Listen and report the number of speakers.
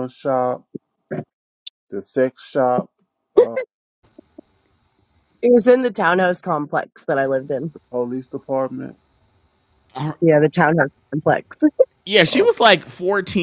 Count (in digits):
3